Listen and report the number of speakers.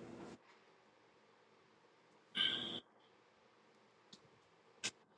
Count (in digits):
0